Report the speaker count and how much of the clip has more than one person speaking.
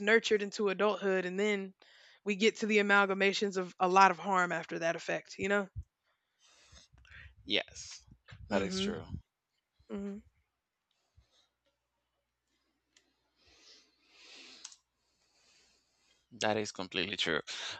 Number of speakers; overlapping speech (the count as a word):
two, about 2%